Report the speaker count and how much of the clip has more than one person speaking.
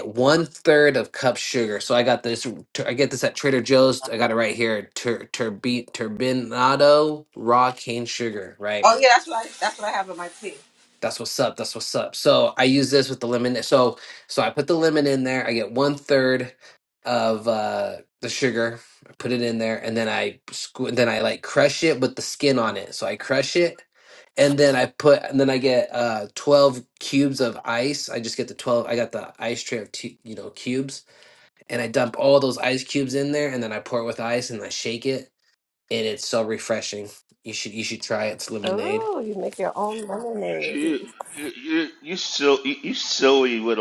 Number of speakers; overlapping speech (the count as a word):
three, about 1%